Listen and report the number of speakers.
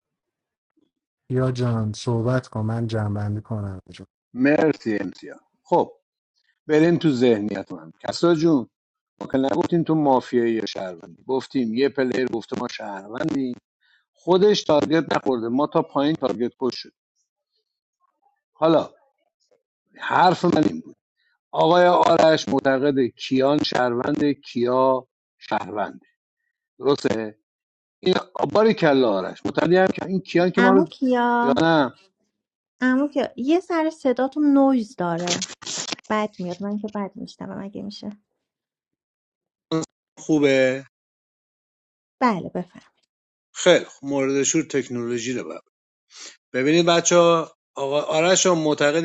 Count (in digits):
3